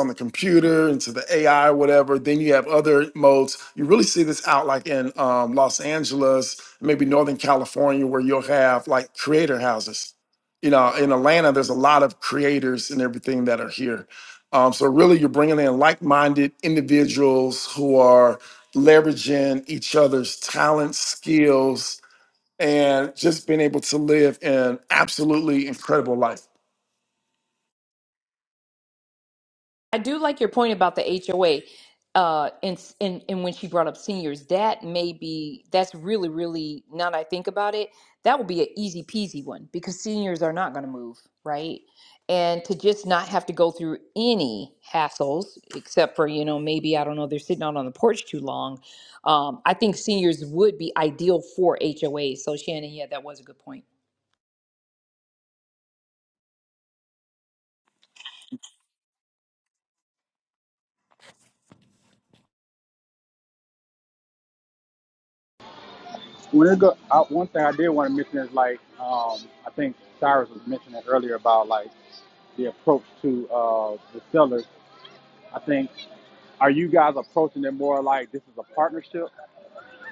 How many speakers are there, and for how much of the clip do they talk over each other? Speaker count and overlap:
three, no overlap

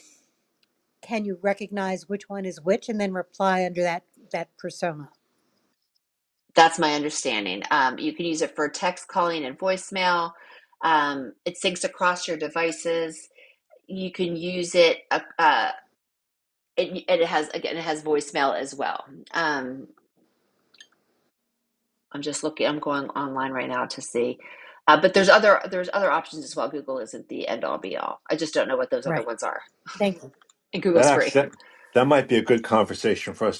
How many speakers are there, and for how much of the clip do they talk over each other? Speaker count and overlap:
three, about 2%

